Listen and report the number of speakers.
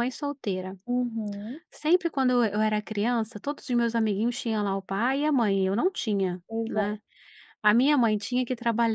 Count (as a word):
two